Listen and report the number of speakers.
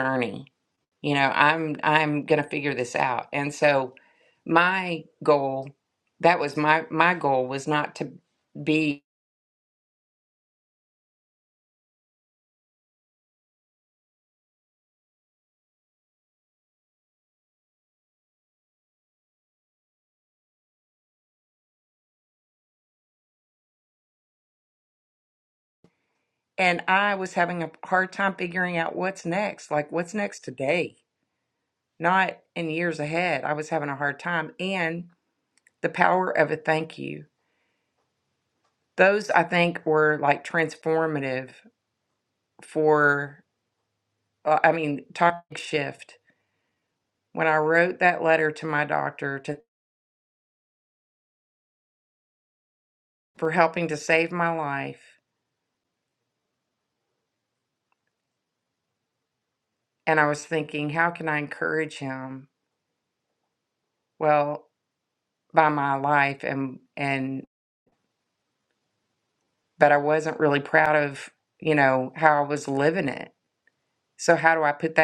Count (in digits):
1